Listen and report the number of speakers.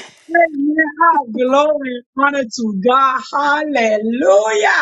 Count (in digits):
1